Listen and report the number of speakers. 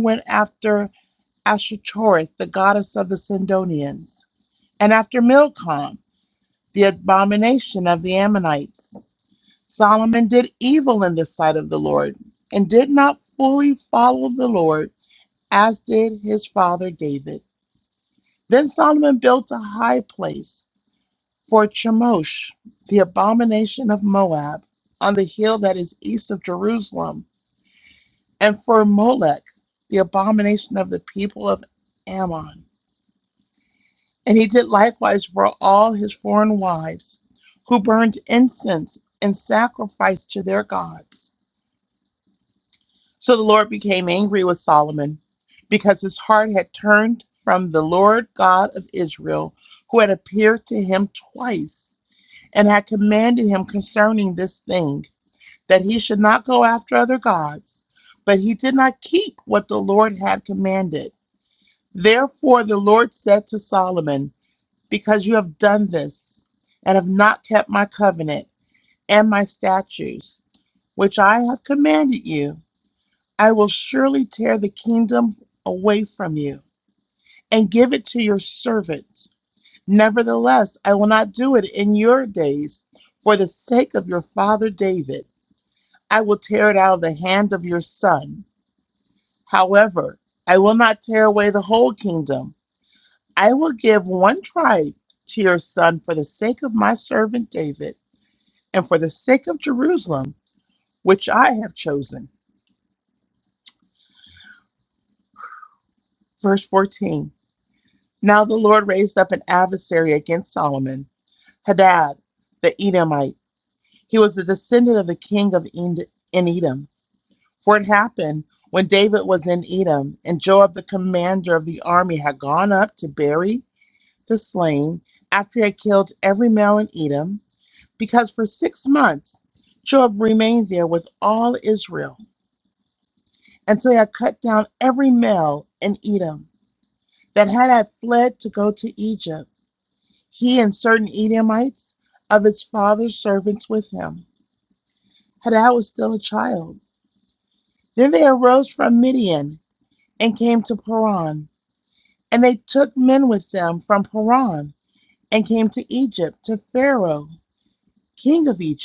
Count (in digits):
1